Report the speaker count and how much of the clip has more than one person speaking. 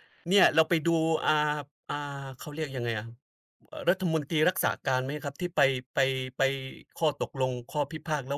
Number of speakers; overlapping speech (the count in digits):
1, no overlap